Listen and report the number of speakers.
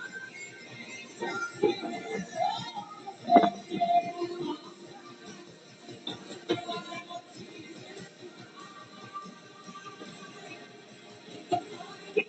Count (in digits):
0